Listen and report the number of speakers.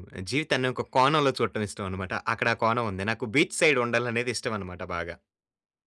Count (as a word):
one